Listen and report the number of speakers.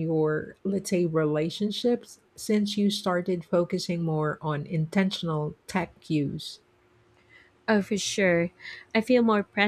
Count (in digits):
2